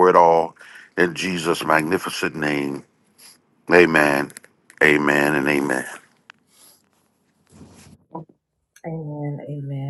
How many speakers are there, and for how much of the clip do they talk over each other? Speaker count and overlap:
two, no overlap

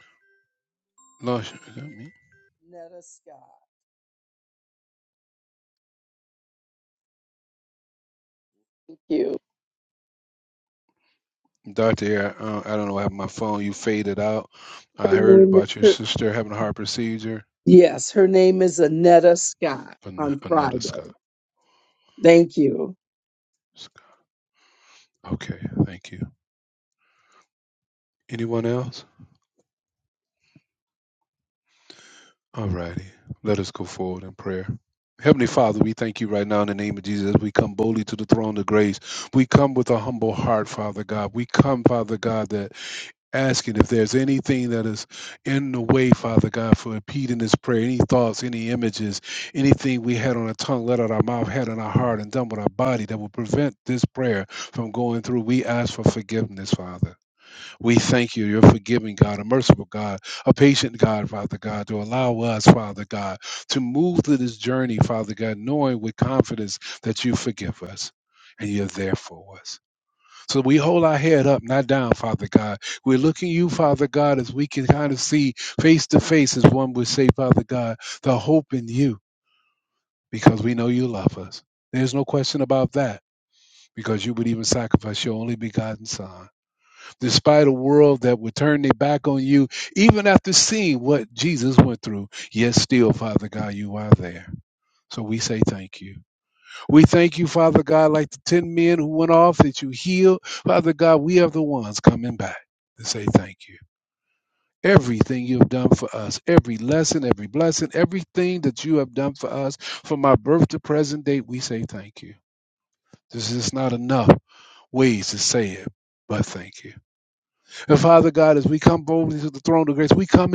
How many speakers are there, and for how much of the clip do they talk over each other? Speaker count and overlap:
two, about 2%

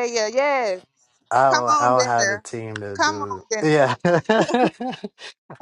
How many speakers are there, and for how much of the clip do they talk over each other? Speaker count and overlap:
two, about 32%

